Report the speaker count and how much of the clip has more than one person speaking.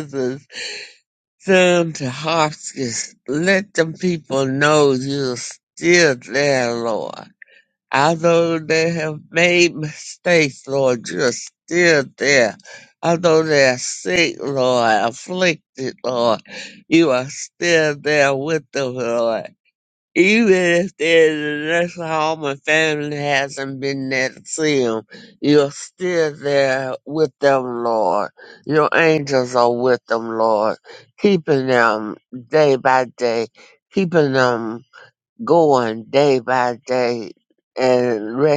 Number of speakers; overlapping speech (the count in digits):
1, no overlap